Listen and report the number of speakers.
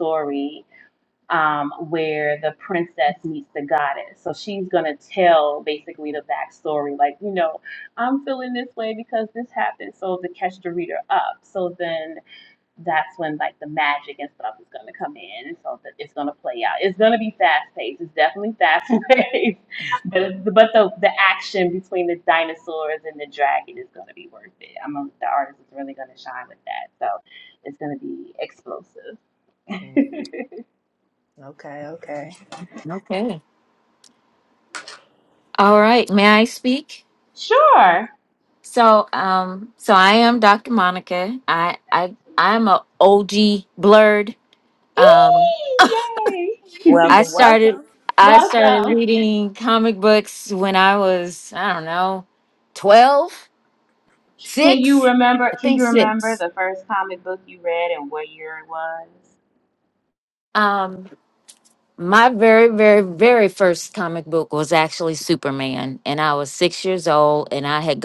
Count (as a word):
three